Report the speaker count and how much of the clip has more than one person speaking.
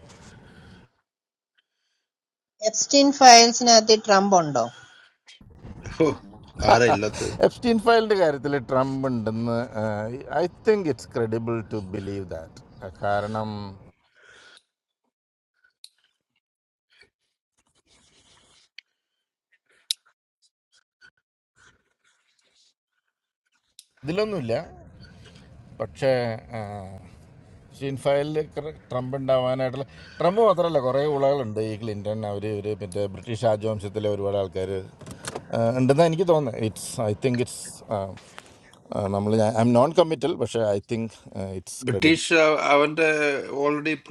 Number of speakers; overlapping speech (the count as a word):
three, about 1%